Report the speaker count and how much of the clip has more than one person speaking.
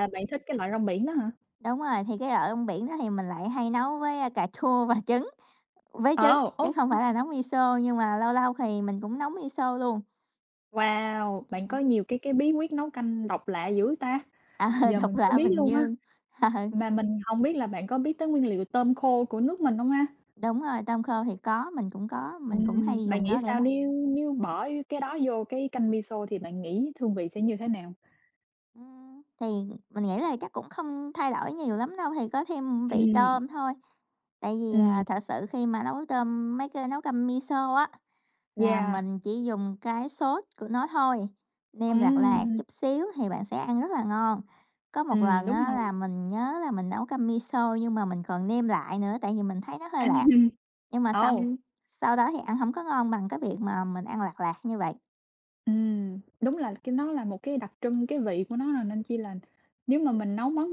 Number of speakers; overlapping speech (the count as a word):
two, about 10%